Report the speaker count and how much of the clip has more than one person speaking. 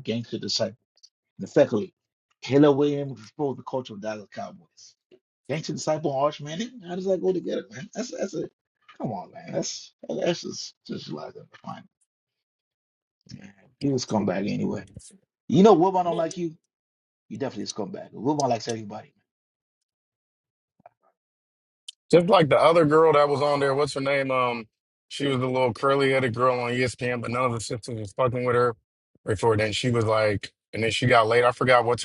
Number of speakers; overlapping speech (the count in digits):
2, no overlap